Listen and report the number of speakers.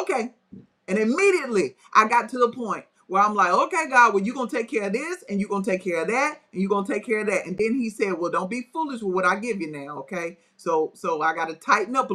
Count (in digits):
1